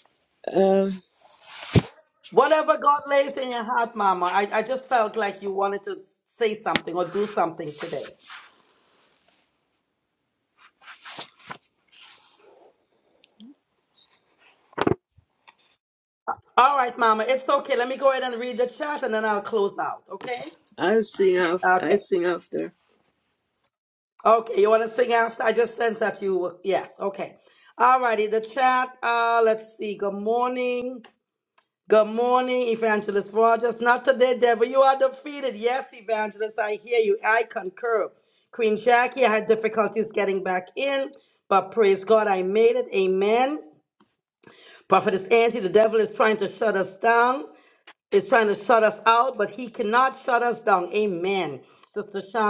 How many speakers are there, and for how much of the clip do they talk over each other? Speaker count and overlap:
2, about 1%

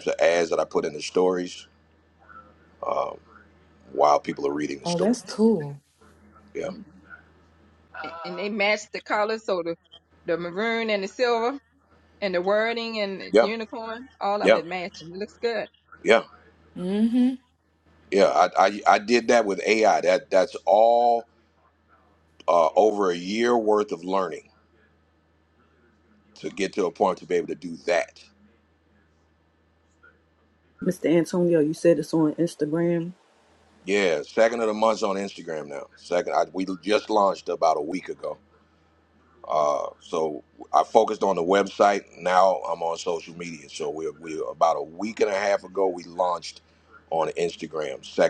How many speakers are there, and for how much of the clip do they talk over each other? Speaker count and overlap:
4, about 2%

